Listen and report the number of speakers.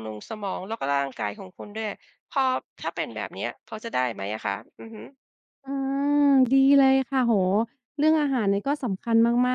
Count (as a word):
two